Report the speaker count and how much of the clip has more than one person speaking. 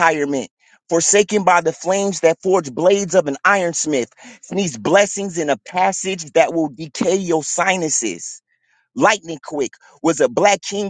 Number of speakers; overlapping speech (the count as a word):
one, no overlap